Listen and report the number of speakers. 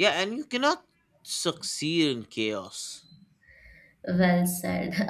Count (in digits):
2